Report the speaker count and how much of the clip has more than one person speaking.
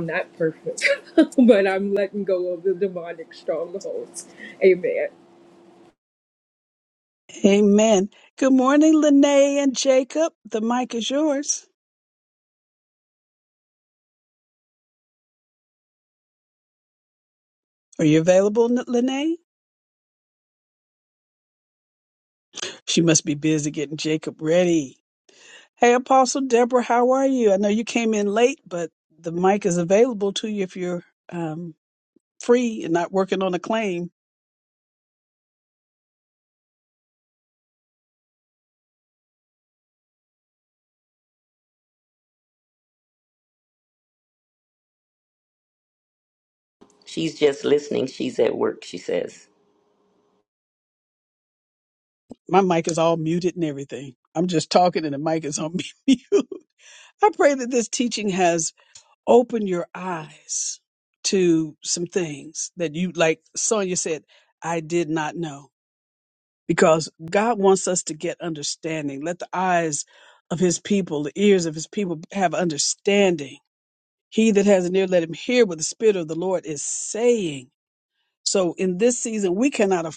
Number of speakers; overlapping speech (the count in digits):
3, no overlap